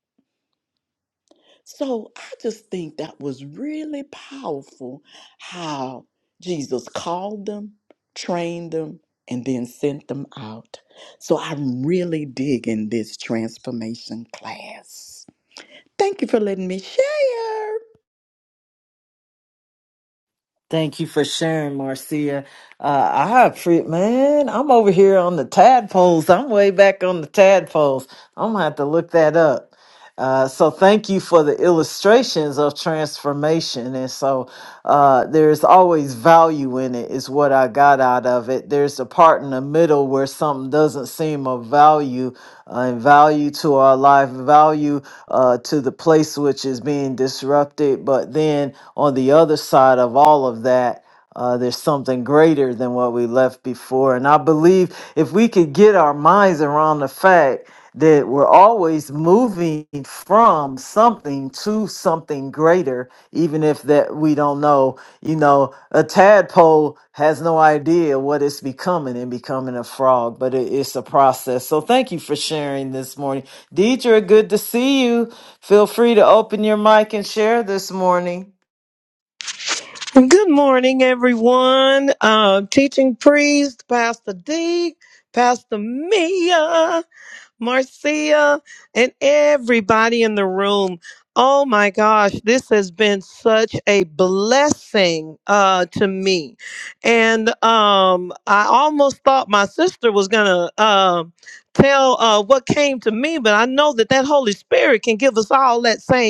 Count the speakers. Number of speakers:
3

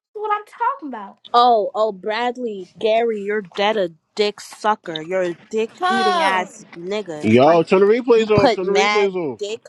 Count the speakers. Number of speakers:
3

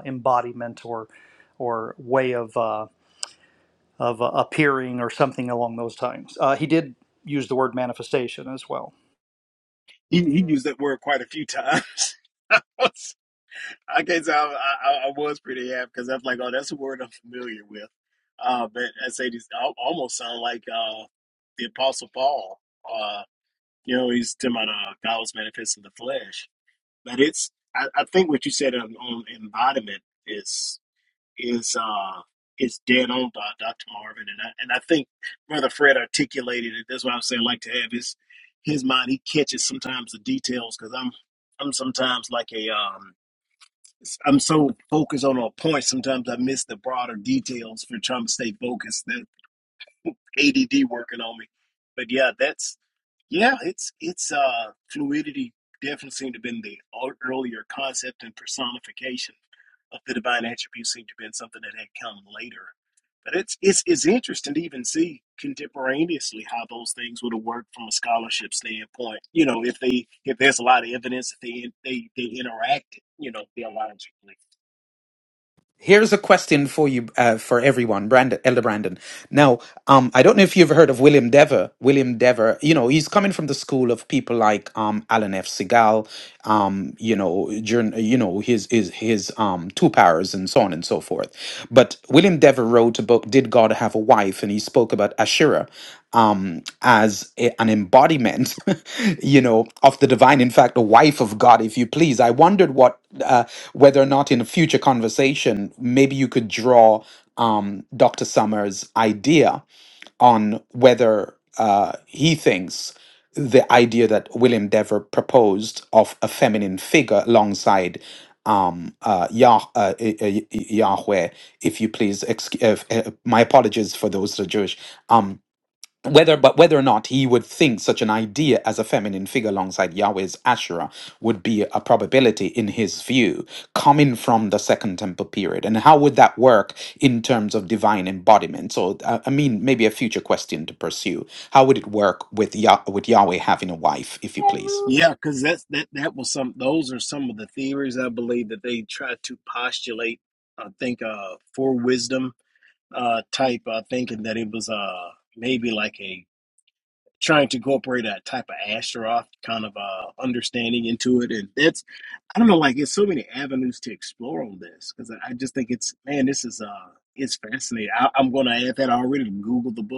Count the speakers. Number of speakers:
3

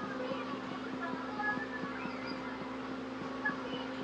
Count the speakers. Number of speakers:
0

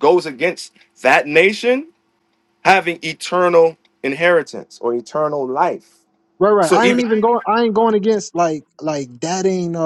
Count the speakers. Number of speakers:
2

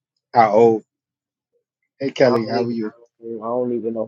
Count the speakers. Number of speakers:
2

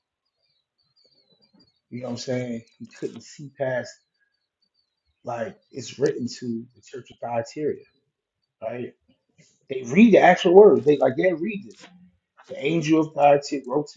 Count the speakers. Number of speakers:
1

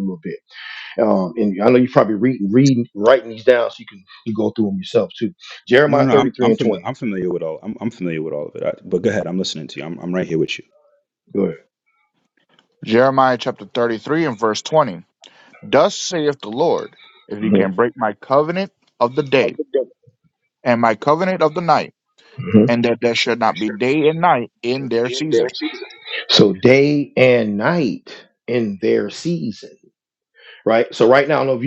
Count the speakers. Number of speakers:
3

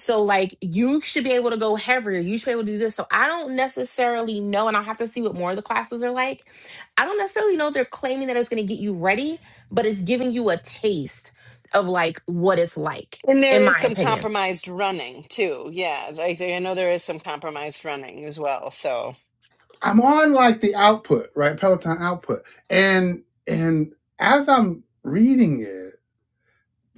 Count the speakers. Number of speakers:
3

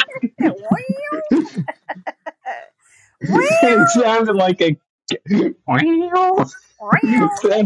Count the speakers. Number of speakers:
2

